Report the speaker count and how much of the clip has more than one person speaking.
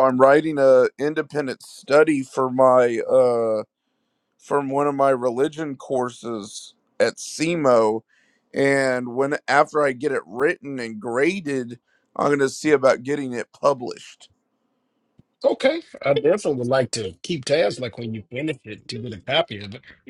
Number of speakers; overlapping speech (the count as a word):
two, no overlap